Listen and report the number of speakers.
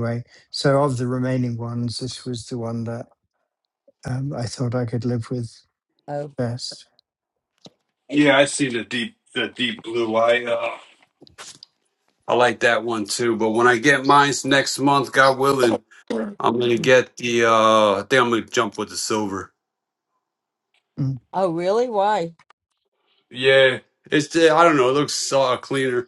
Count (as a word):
three